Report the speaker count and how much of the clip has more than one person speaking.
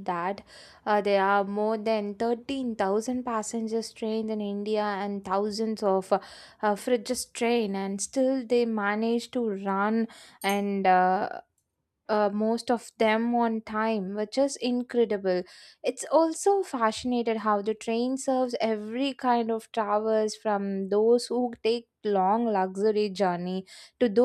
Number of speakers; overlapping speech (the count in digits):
1, no overlap